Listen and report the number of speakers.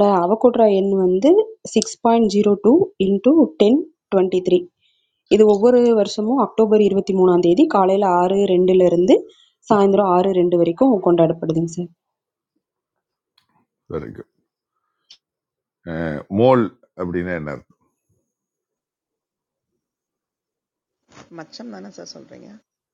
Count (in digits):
3